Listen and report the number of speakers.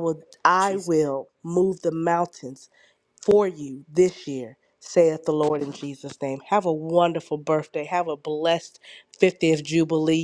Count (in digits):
1